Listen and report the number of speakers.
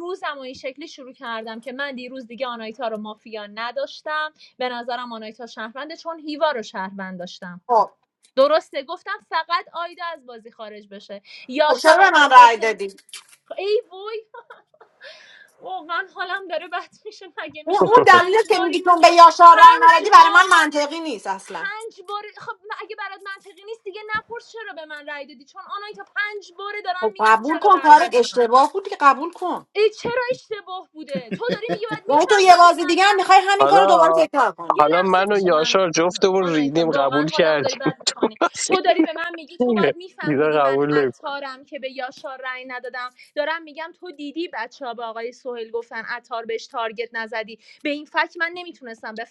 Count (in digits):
3